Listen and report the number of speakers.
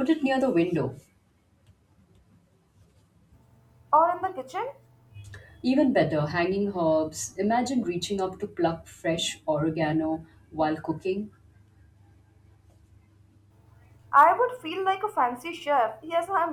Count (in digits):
2